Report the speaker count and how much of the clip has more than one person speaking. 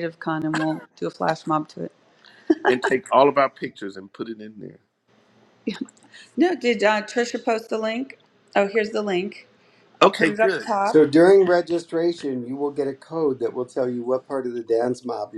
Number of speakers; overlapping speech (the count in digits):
3, about 6%